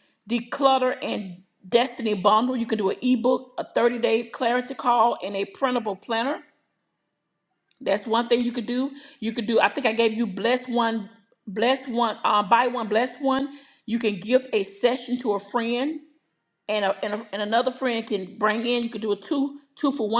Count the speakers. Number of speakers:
1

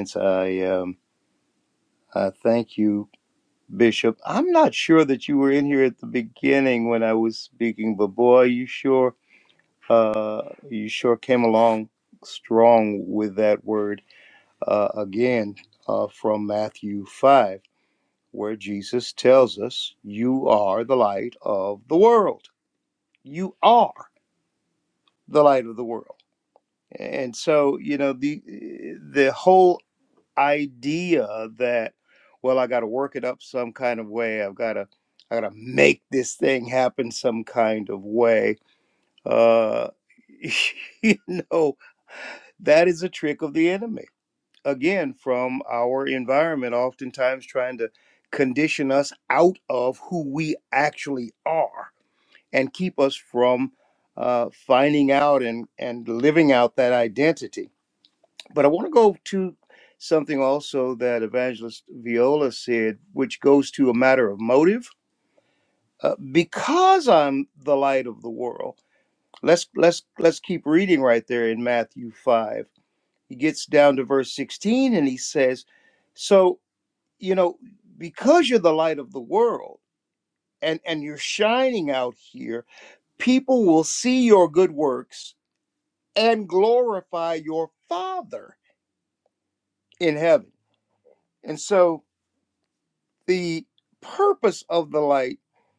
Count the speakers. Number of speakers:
1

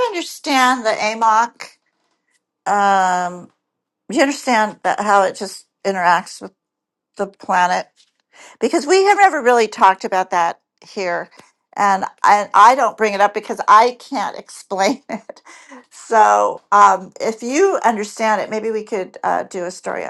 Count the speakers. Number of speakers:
1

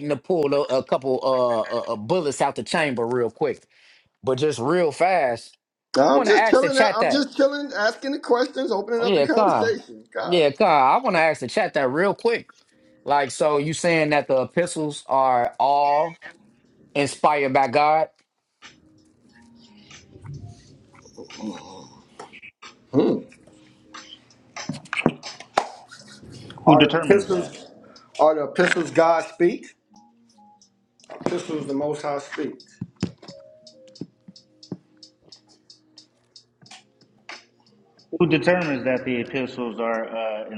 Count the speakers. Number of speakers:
3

